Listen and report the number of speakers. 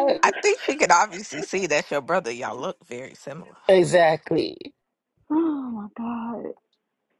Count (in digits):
3